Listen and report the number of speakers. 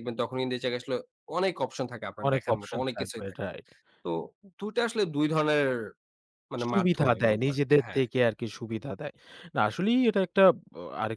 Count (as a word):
two